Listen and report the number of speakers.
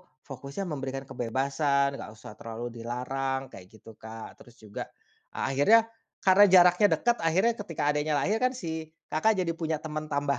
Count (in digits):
1